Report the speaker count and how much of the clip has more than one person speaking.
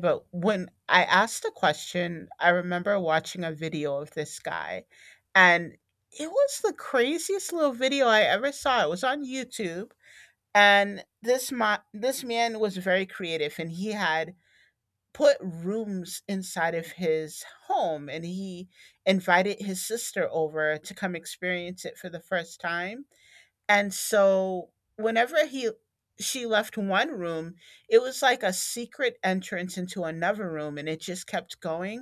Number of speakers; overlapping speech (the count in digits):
1, no overlap